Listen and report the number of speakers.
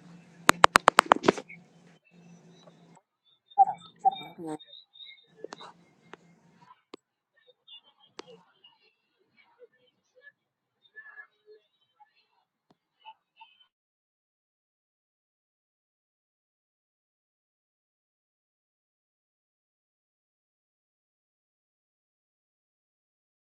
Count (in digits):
0